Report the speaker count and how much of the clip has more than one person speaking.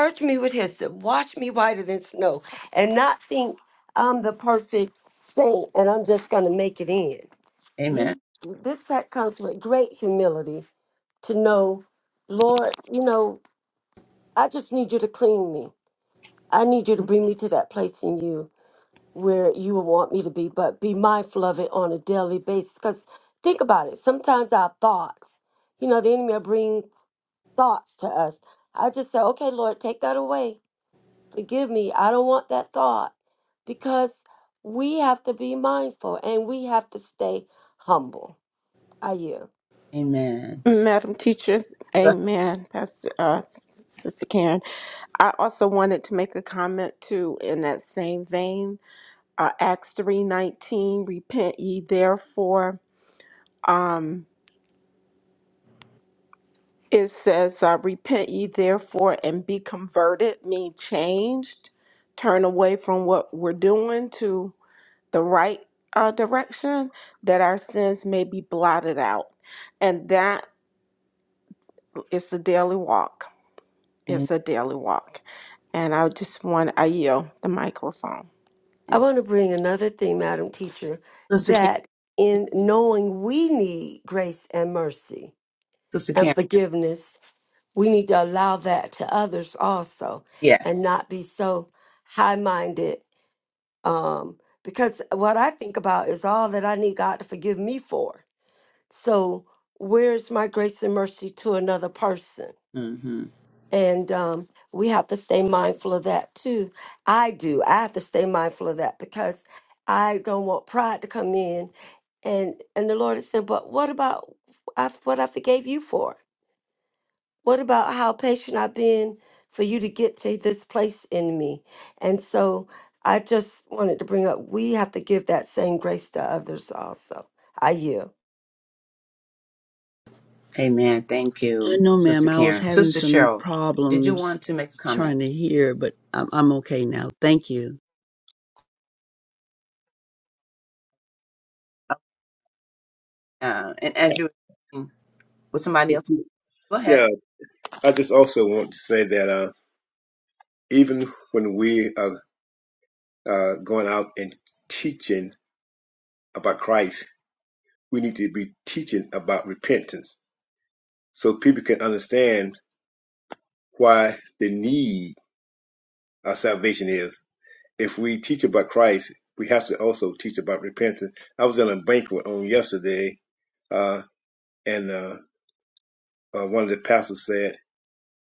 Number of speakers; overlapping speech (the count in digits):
5, about 2%